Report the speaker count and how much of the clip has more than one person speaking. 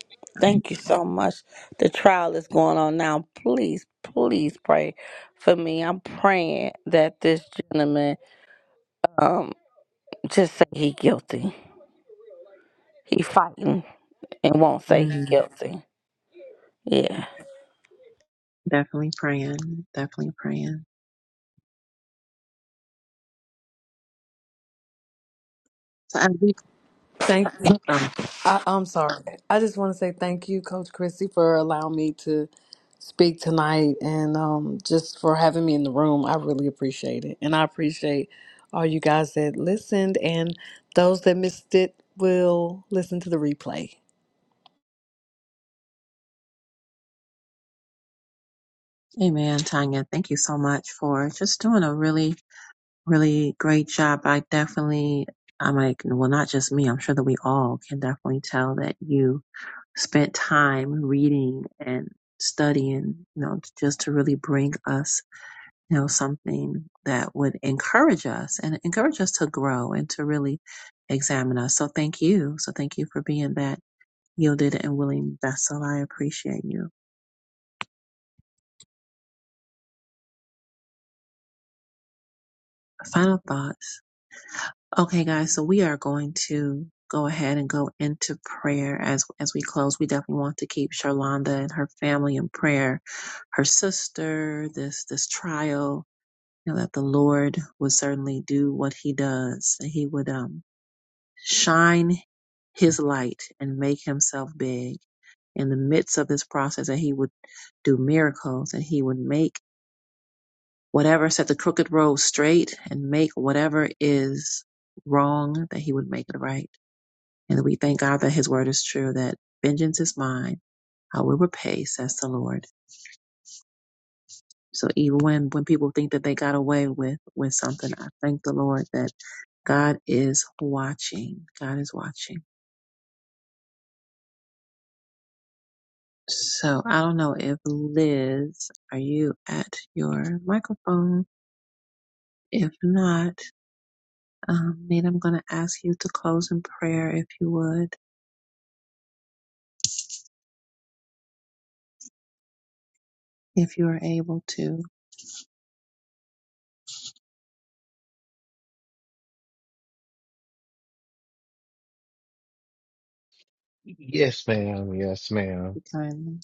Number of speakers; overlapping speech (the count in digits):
4, under 1%